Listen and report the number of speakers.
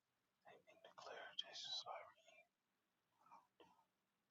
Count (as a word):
zero